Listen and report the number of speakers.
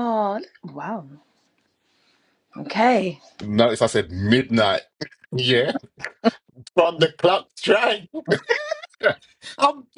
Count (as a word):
two